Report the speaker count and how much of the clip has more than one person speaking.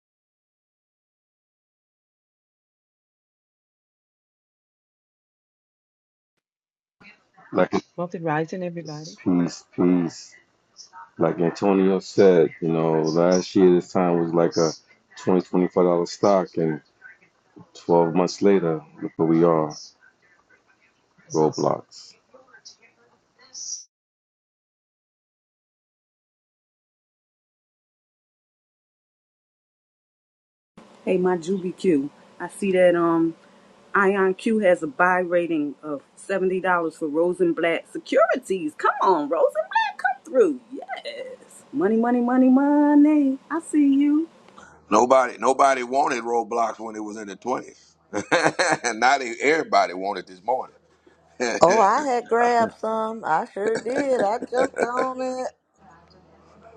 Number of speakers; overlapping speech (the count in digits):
5, no overlap